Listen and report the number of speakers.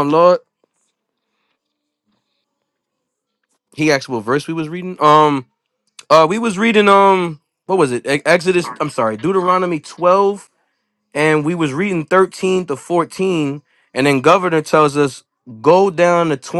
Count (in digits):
1